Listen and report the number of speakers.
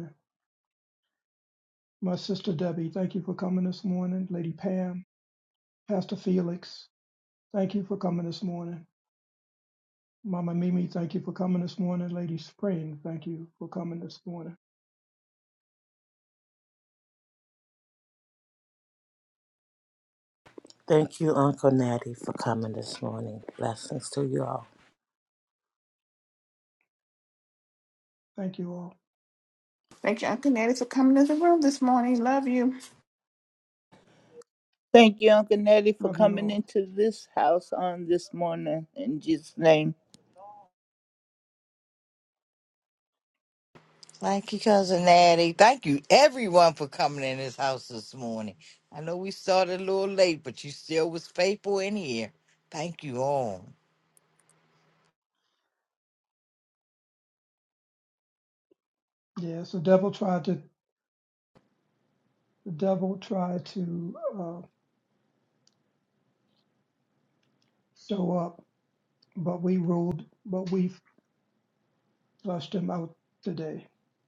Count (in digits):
5